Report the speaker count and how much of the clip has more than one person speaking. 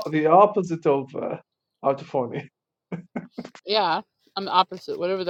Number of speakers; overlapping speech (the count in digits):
2, no overlap